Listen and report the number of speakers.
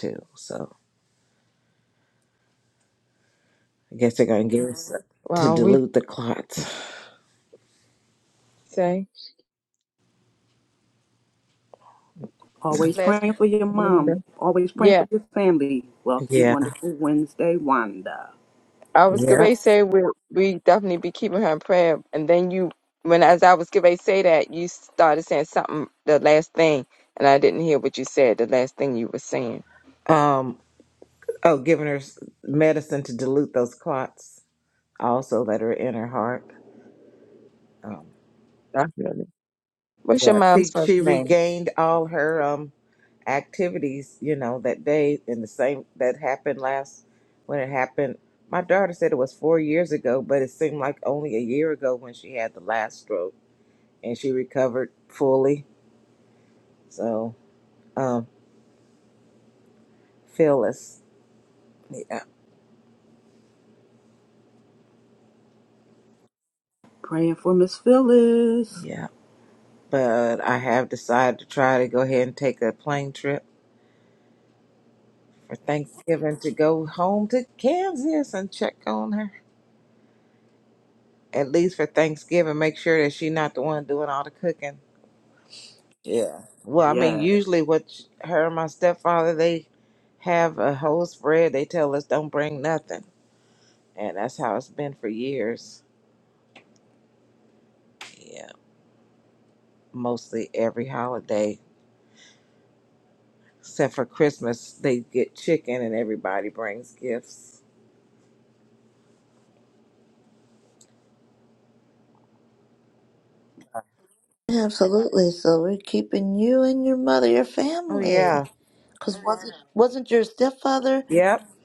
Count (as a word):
four